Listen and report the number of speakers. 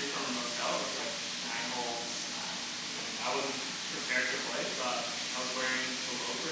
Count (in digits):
1